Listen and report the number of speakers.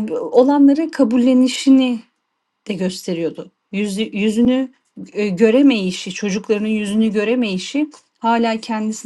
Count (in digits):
1